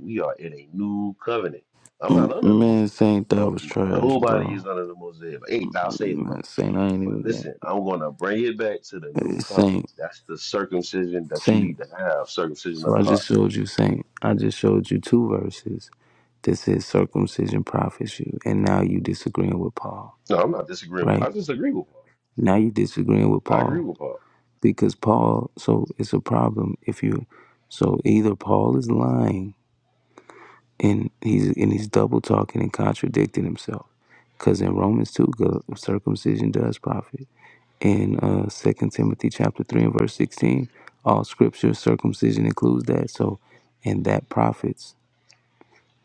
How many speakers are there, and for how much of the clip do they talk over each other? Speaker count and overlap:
2, about 12%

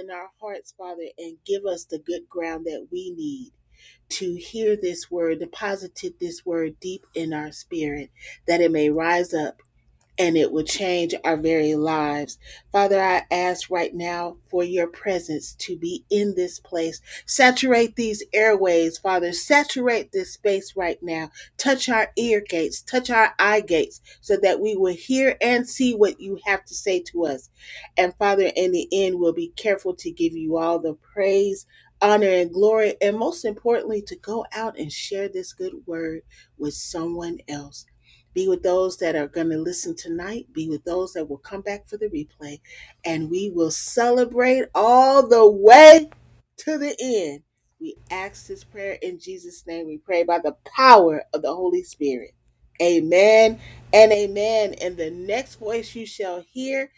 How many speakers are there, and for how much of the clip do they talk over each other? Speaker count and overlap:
1, no overlap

